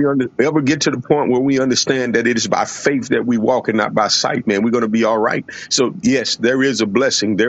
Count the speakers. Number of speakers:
1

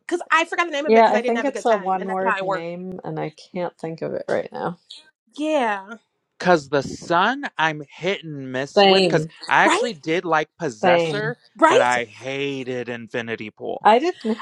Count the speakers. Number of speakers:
3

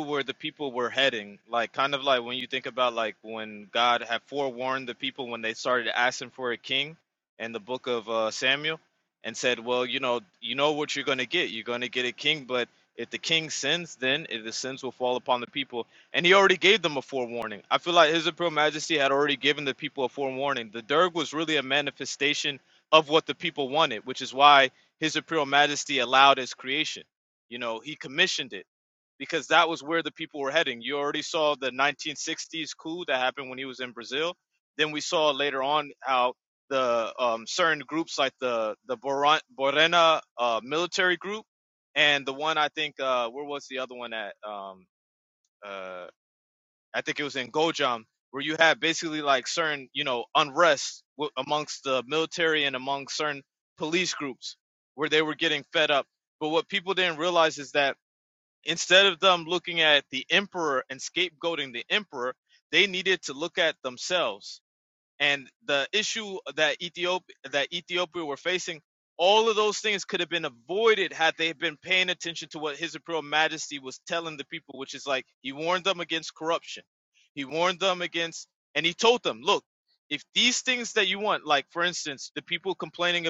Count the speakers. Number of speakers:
1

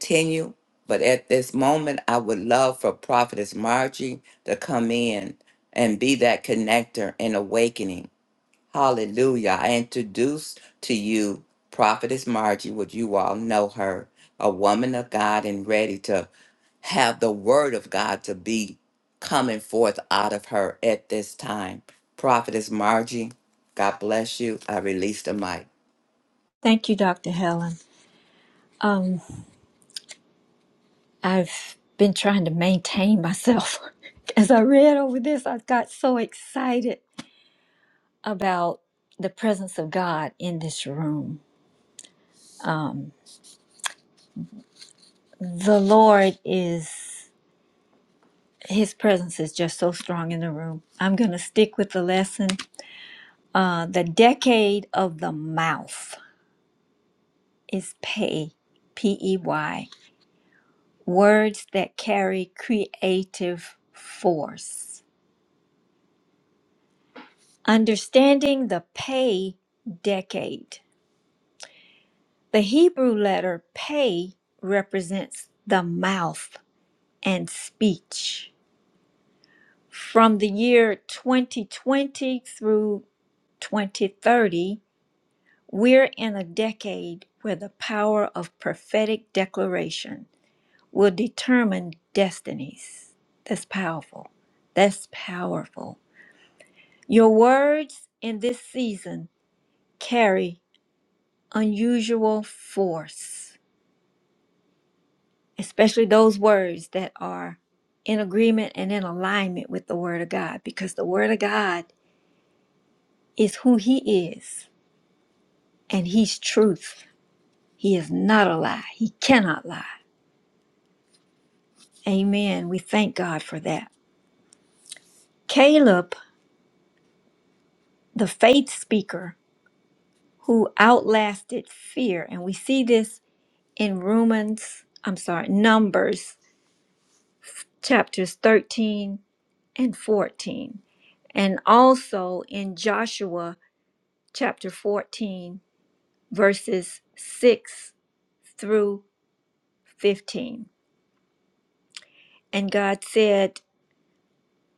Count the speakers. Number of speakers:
2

